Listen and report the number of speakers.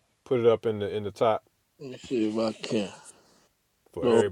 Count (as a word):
two